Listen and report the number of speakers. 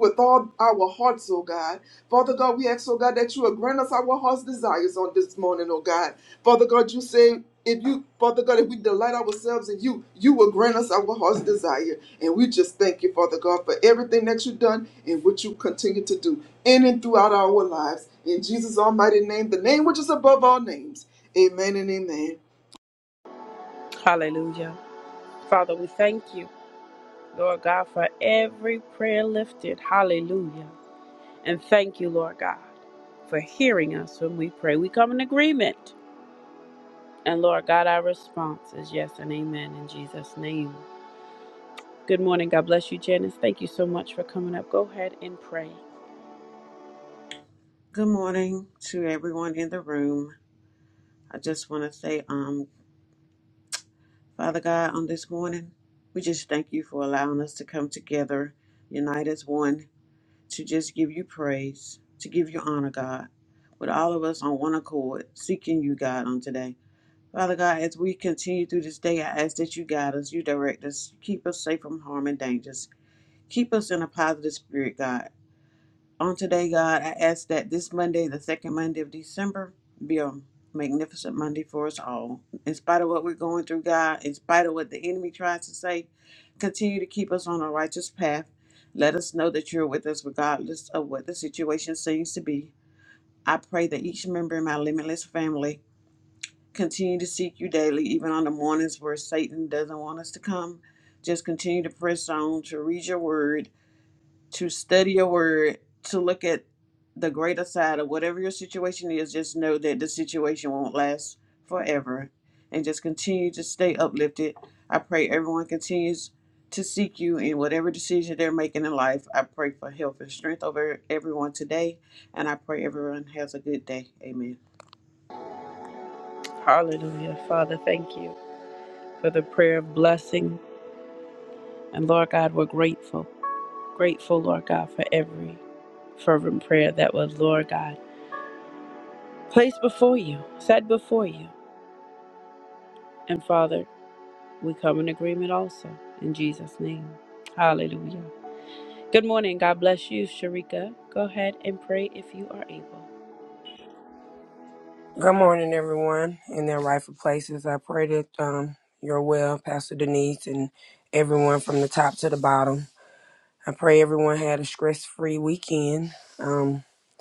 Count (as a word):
four